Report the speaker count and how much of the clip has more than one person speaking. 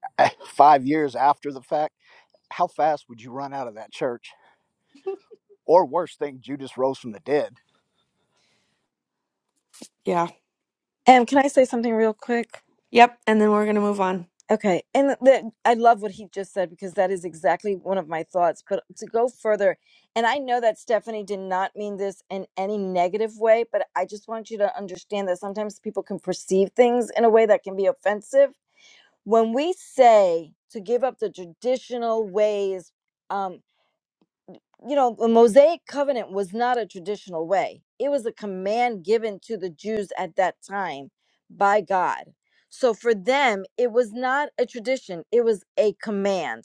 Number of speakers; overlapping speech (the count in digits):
3, no overlap